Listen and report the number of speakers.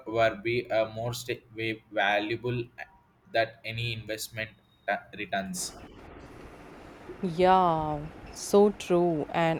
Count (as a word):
two